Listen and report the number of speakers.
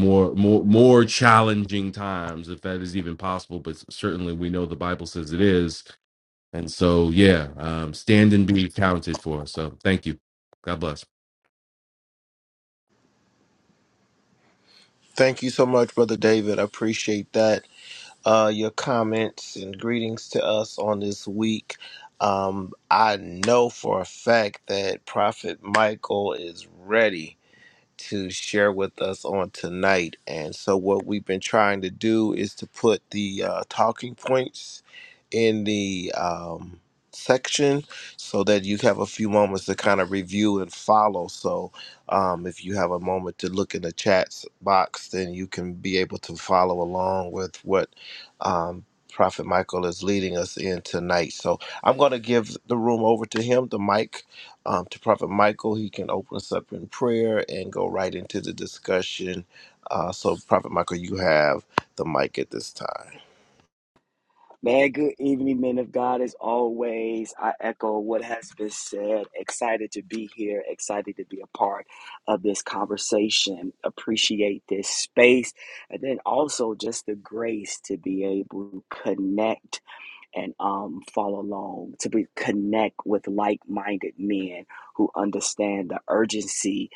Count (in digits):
3